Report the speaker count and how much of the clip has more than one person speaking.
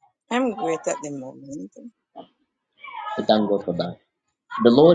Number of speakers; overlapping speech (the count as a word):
two, no overlap